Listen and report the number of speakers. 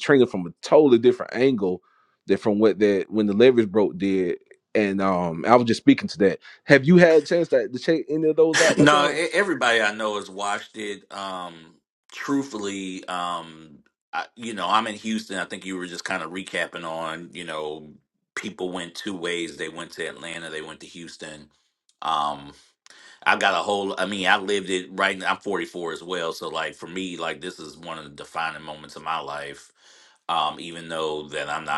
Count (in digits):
2